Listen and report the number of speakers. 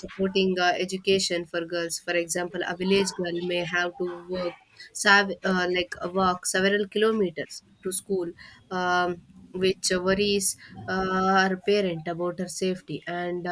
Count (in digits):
1